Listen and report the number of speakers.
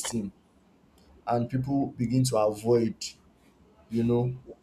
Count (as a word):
one